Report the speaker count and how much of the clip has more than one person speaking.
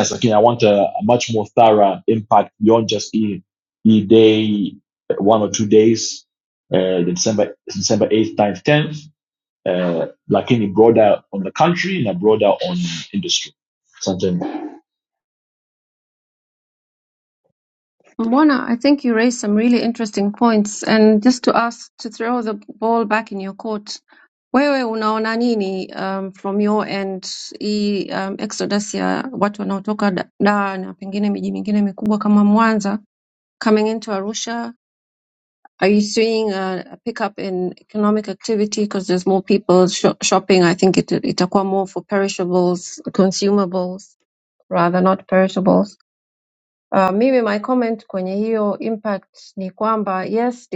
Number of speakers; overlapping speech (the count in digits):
2, no overlap